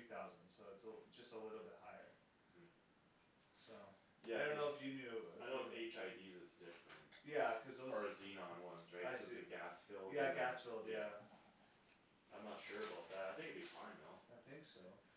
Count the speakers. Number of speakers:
2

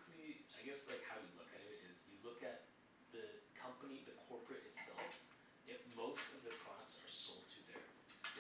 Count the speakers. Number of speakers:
1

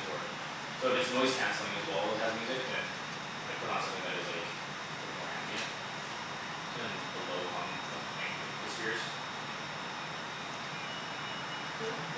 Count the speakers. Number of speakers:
1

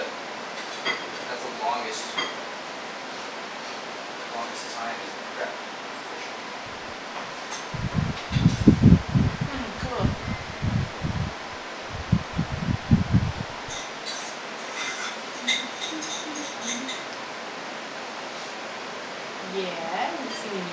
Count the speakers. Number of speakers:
2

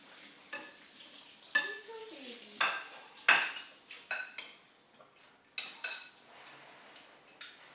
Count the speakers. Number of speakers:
1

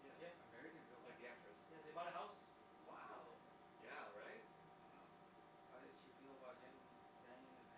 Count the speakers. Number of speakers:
3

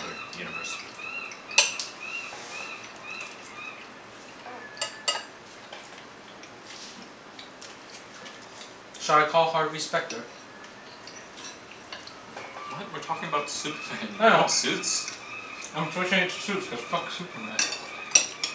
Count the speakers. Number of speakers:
2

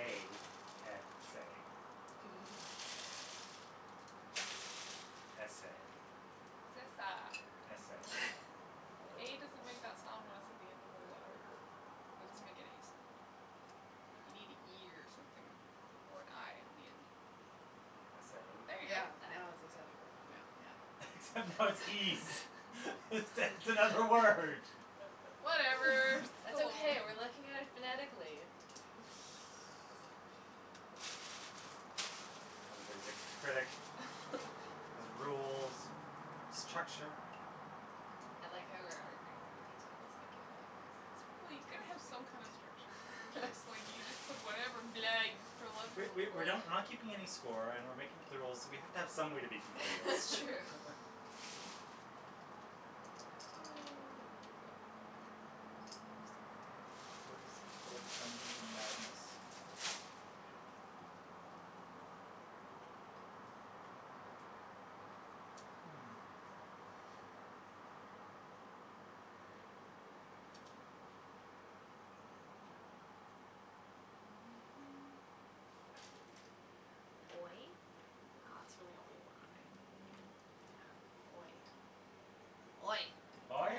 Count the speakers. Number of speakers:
4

